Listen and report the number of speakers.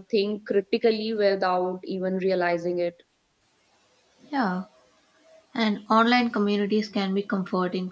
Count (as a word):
two